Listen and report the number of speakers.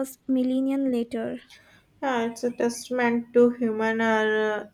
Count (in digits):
2